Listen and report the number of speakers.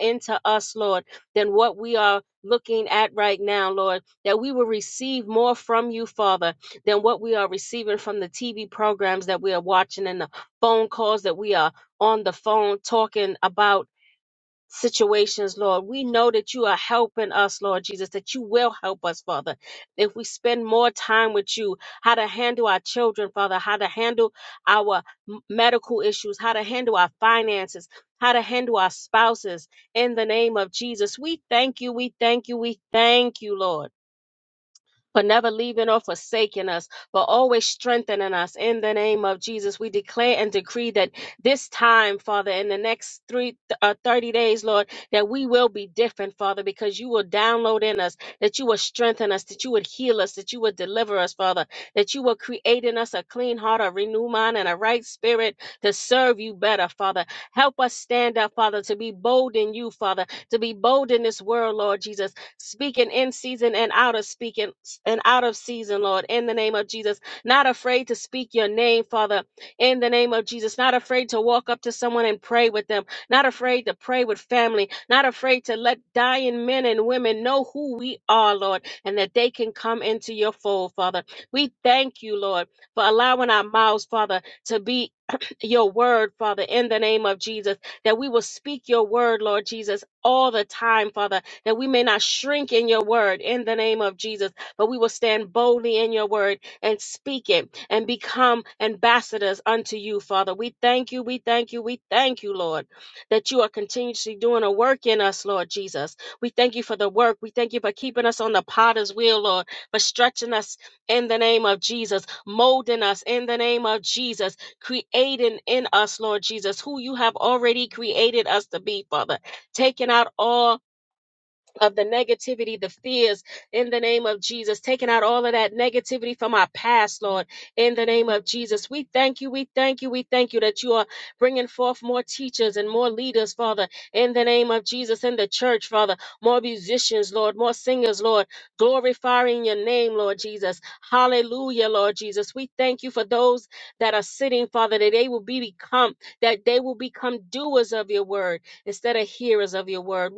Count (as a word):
one